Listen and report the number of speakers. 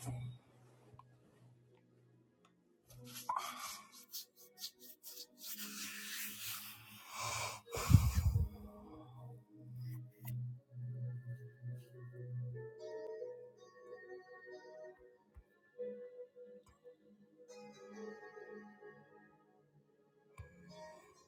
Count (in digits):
0